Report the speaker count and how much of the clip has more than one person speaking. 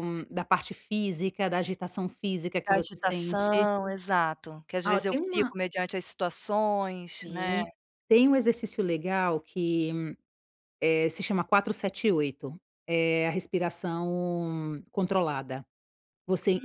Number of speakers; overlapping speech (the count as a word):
two, about 13%